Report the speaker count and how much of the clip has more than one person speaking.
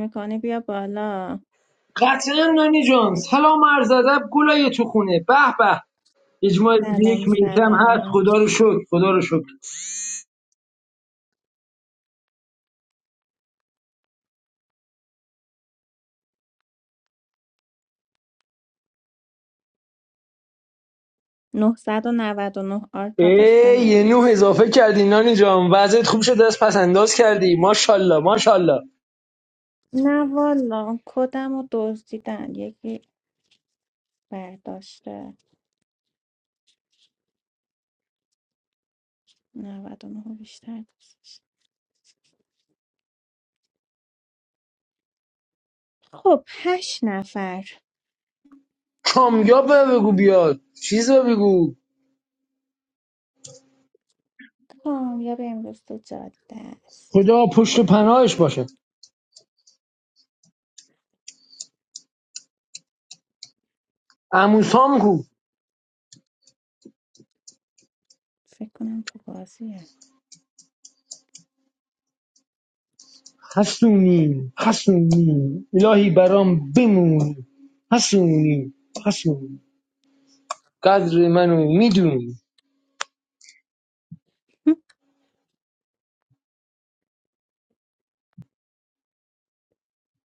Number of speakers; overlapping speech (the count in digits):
2, about 3%